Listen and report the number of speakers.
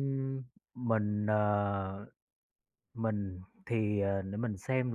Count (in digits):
1